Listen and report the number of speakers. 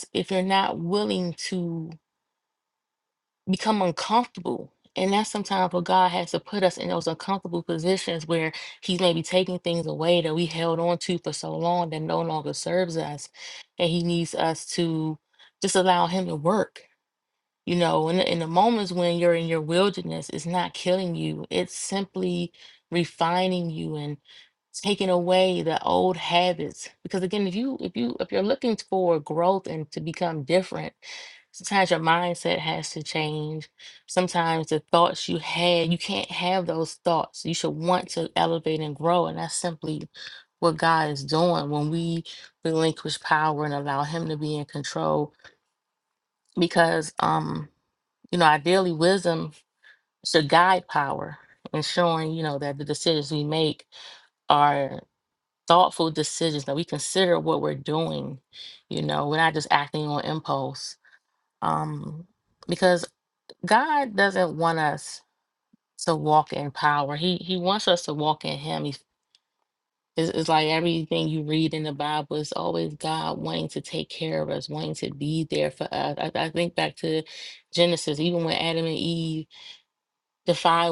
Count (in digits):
1